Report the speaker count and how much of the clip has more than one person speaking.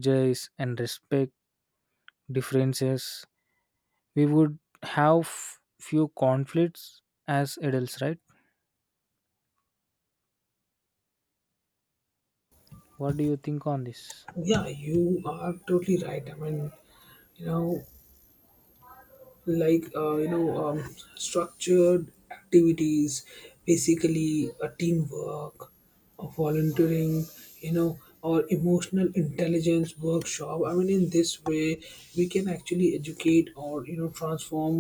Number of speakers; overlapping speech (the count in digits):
2, no overlap